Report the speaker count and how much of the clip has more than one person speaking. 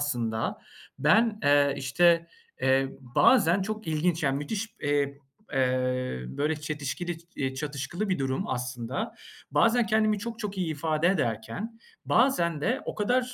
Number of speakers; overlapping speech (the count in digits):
1, no overlap